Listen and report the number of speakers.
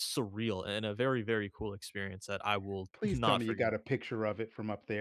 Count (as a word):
two